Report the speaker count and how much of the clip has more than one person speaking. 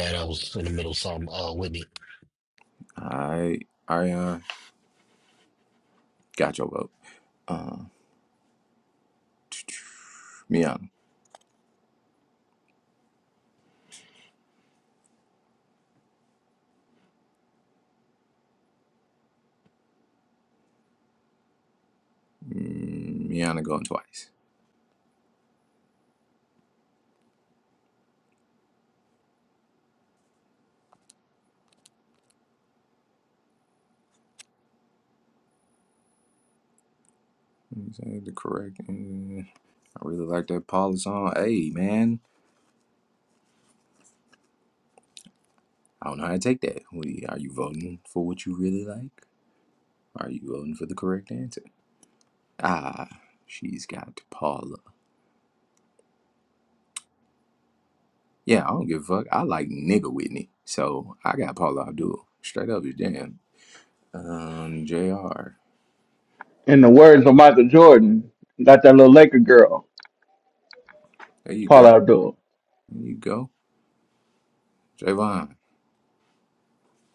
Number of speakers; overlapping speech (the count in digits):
3, under 1%